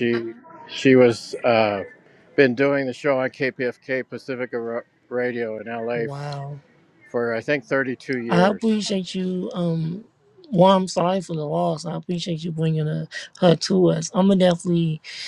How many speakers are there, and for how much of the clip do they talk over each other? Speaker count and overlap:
two, about 5%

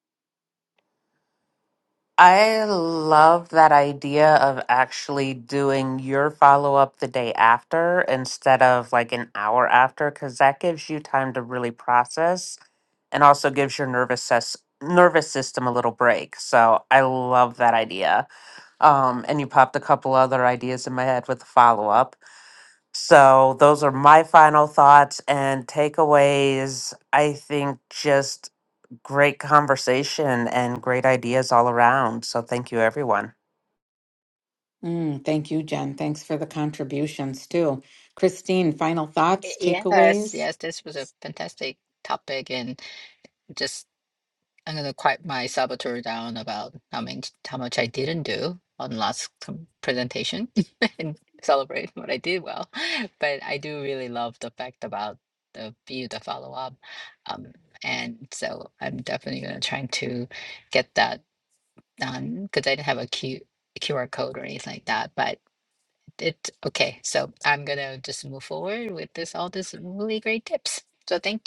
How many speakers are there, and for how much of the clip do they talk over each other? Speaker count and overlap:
three, about 1%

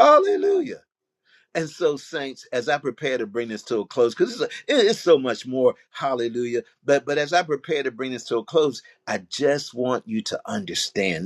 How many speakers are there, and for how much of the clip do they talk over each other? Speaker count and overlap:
one, no overlap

